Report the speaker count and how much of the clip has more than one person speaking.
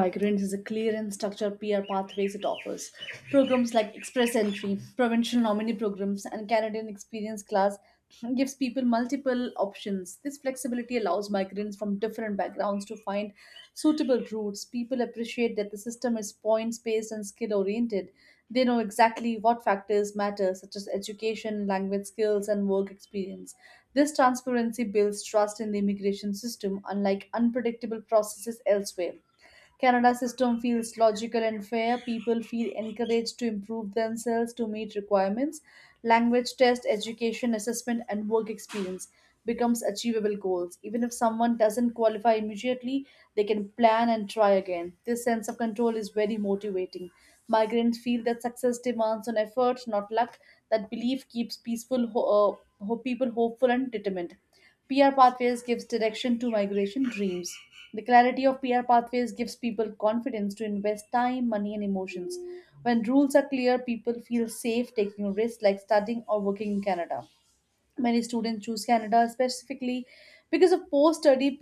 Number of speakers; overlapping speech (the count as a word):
one, no overlap